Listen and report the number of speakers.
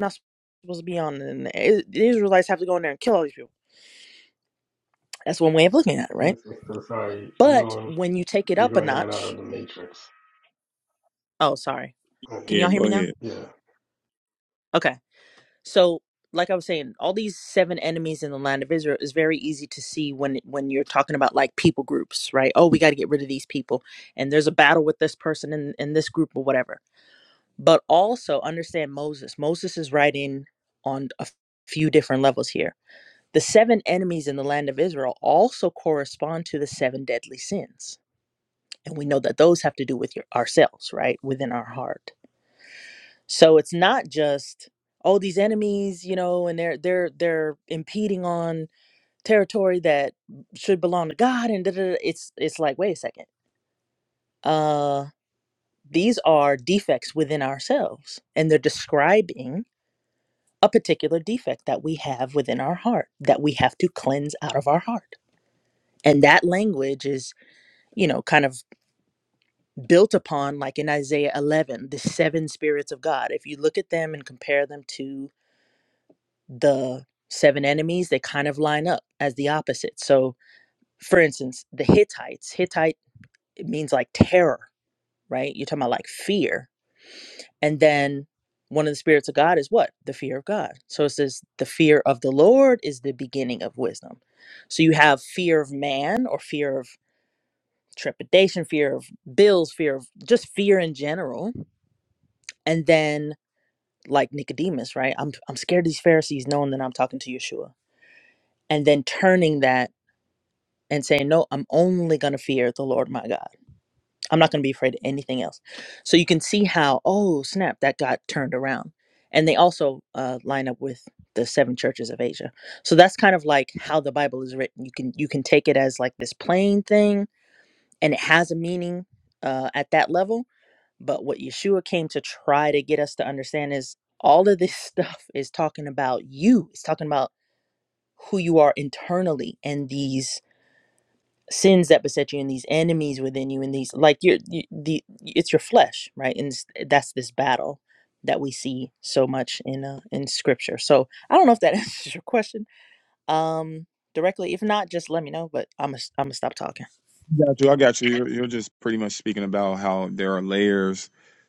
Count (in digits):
3